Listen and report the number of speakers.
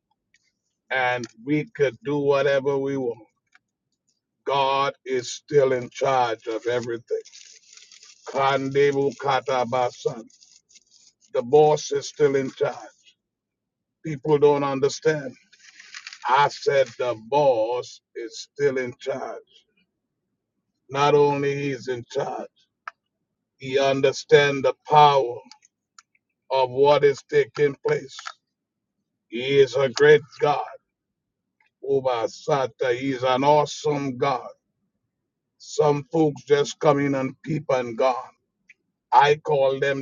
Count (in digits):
1